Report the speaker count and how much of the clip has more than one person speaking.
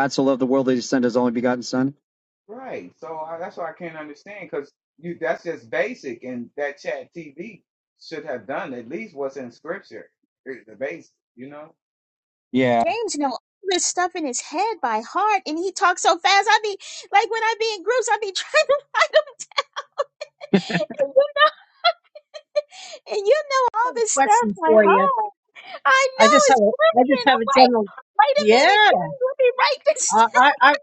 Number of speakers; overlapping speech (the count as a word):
four, about 12%